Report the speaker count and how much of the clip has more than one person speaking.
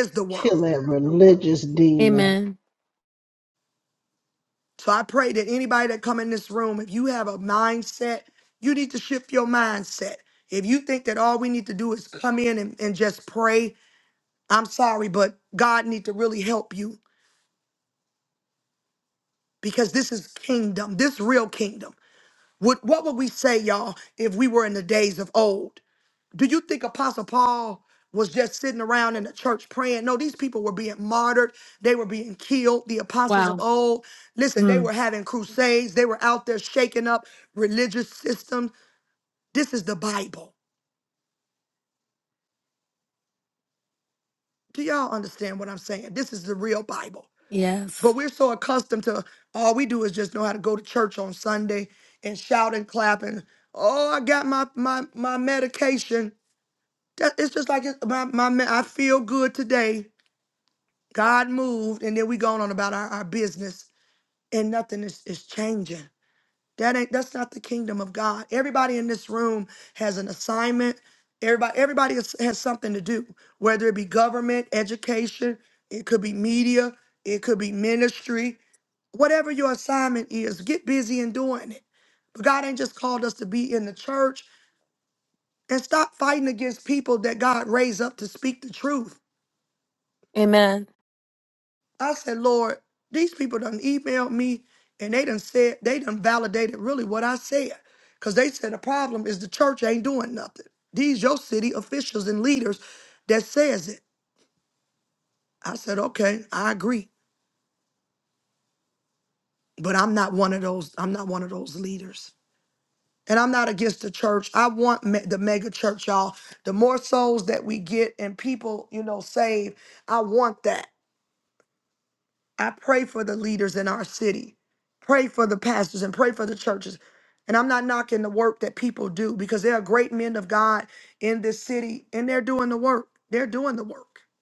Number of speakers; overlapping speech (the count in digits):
3, about 1%